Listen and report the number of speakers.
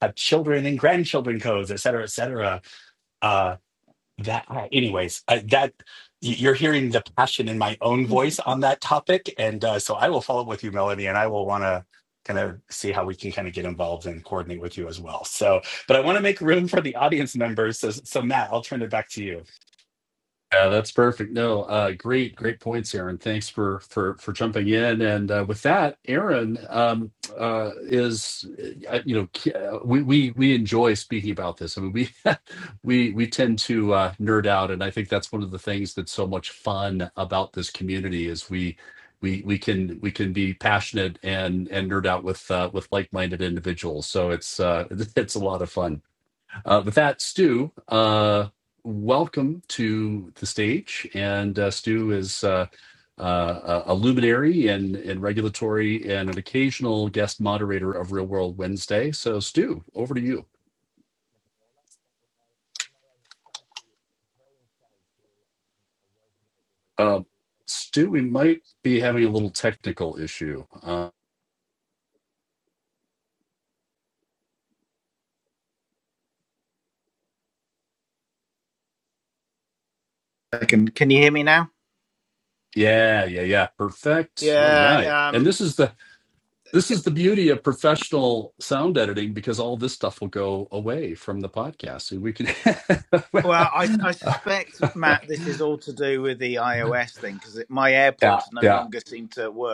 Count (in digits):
3